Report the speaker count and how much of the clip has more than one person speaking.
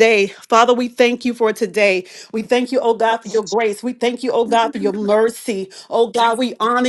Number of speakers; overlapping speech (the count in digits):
1, no overlap